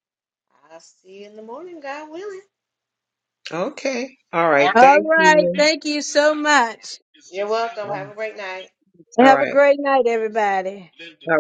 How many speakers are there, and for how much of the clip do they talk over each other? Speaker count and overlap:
three, about 12%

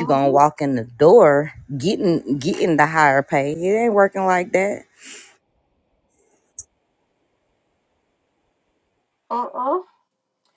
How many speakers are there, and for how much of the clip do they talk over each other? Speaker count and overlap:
two, about 5%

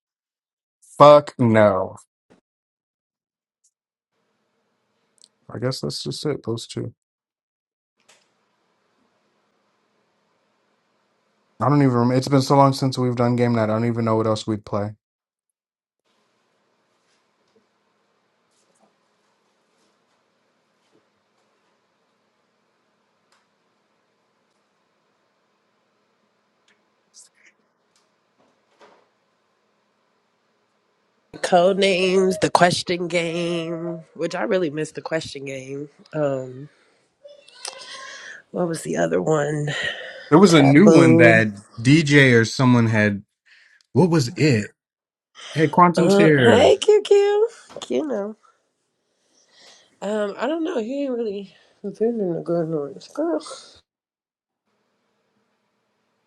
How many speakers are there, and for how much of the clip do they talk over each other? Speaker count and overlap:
two, about 3%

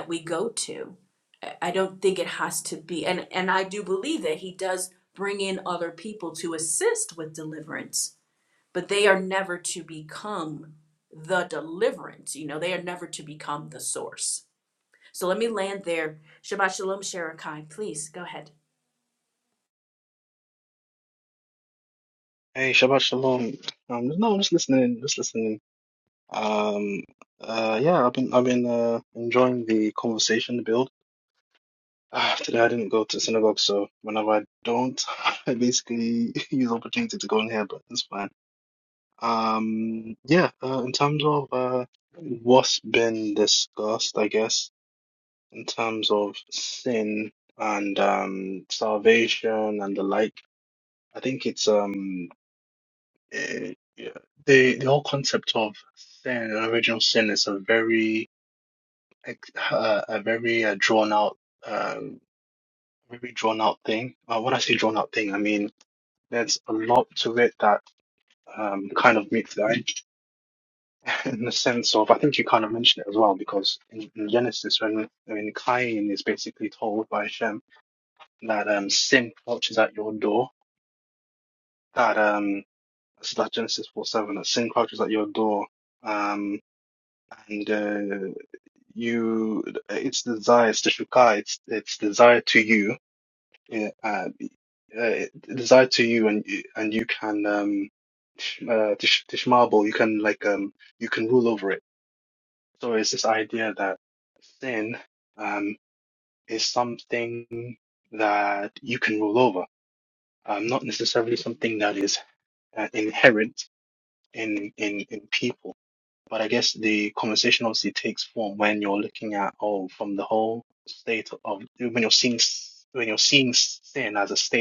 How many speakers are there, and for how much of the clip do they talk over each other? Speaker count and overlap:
two, no overlap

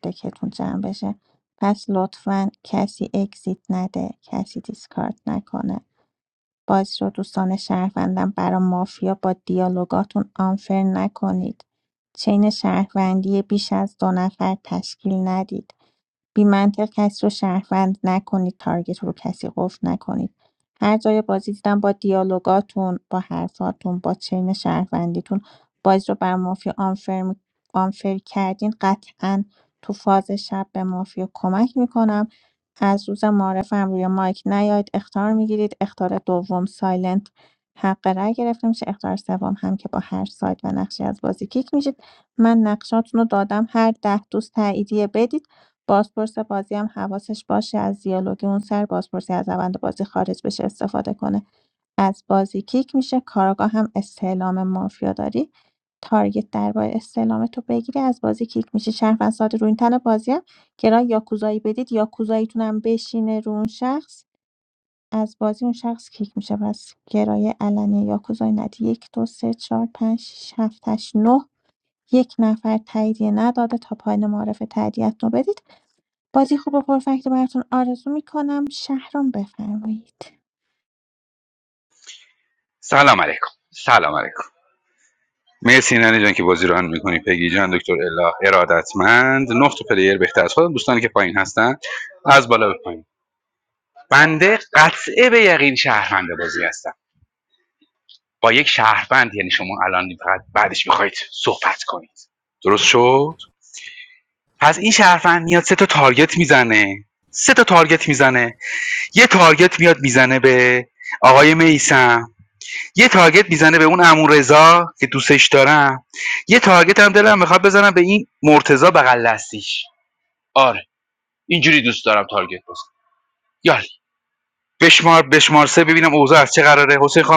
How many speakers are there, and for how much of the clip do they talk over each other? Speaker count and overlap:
two, no overlap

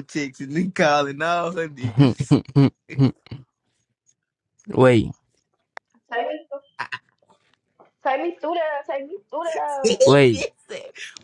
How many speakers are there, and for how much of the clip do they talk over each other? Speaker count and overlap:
three, about 3%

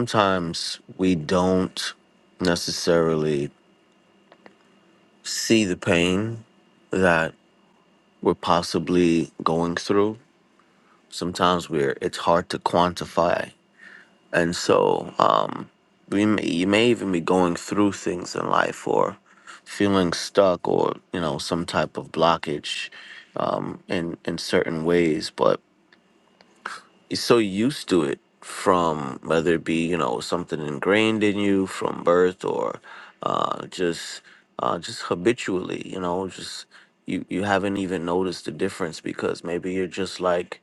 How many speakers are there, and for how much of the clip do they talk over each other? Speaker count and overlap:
one, no overlap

